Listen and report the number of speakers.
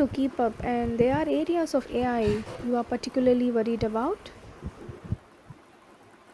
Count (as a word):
one